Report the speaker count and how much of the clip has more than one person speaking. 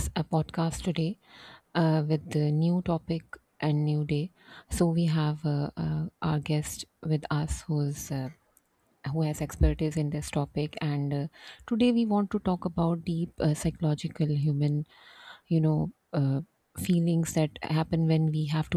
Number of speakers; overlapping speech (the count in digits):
1, no overlap